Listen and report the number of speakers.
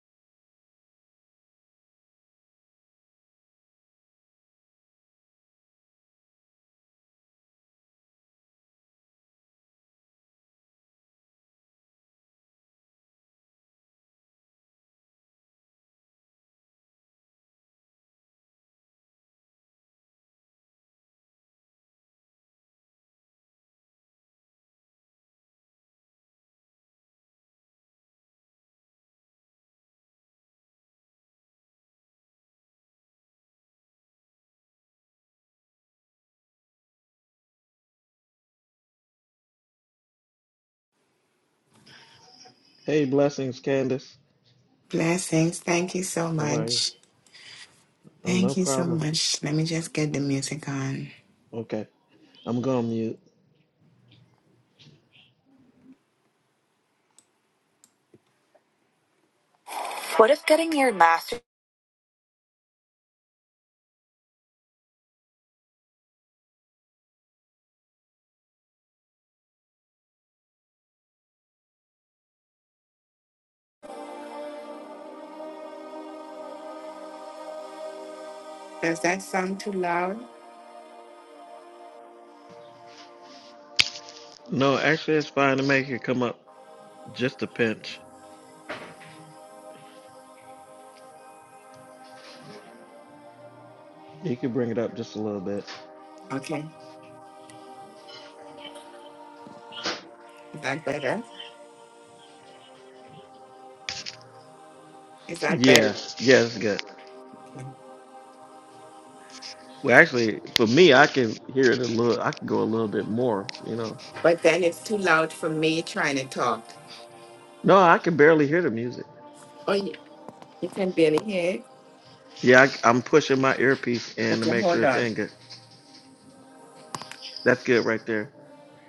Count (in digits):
2